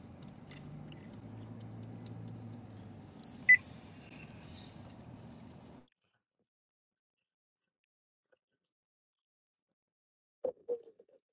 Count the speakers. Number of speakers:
zero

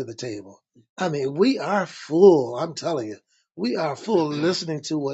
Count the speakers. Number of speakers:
one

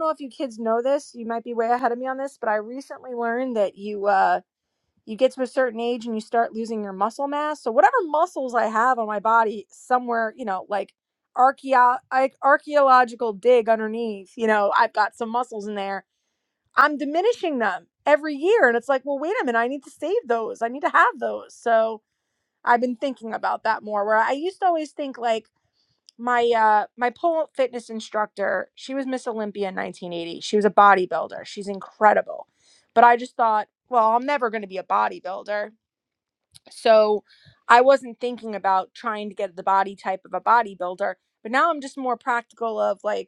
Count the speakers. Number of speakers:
one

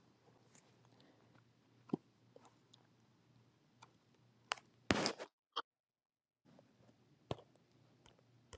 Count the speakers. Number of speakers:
zero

